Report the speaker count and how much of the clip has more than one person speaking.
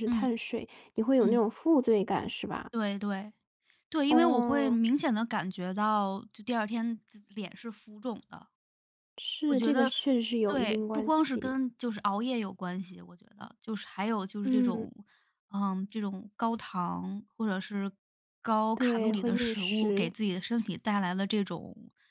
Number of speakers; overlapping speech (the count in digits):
2, about 19%